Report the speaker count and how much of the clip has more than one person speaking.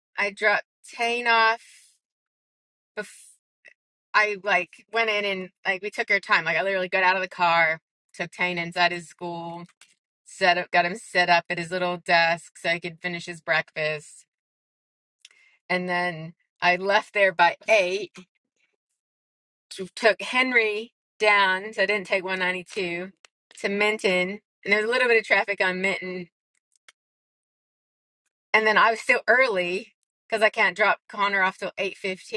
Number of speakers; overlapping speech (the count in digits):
1, no overlap